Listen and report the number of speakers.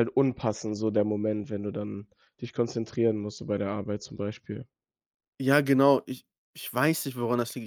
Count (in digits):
2